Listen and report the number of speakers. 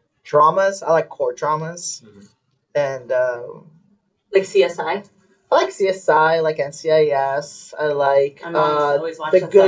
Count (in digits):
2